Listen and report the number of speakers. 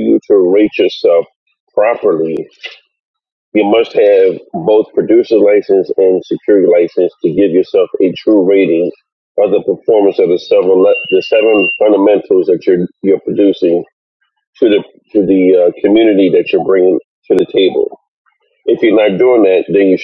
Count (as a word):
one